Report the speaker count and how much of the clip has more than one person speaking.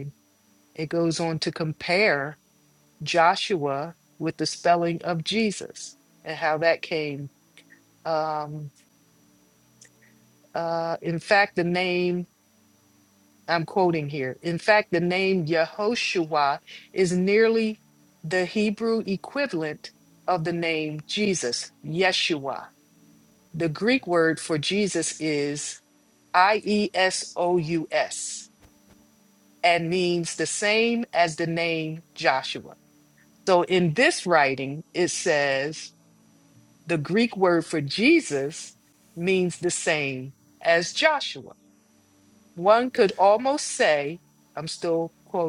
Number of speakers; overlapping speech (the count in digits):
1, no overlap